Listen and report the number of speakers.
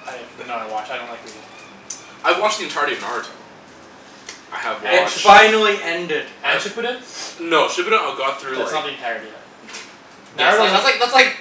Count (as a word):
four